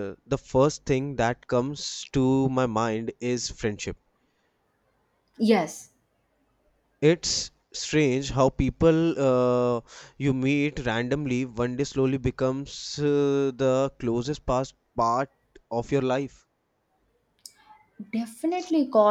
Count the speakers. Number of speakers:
2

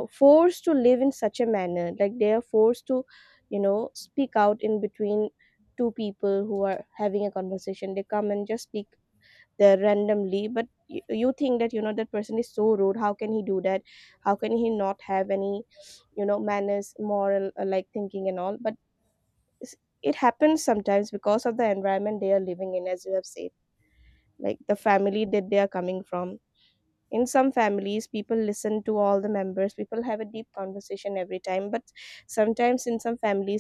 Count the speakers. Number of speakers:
1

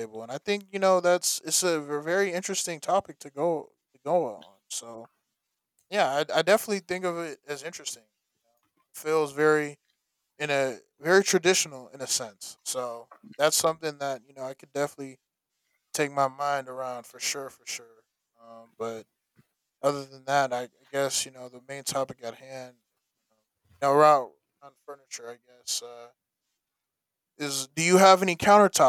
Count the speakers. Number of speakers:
1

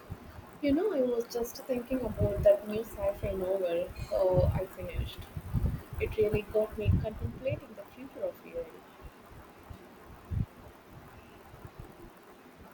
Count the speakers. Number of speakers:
1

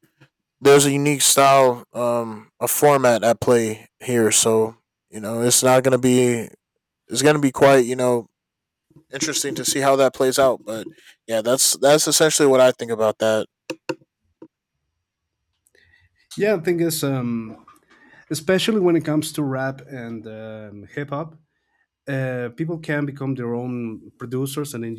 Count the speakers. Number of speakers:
2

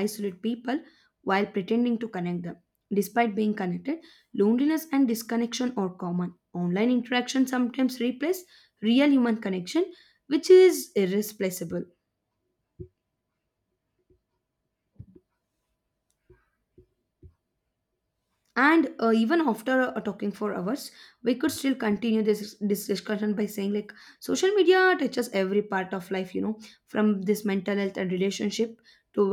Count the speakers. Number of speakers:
1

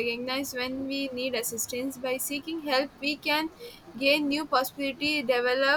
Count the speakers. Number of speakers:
1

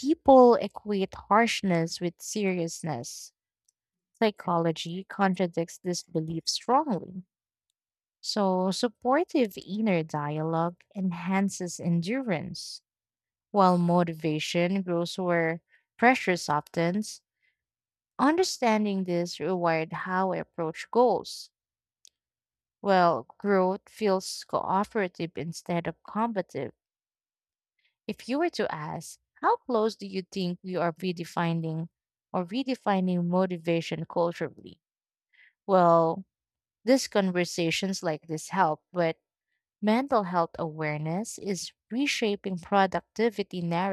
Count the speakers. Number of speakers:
1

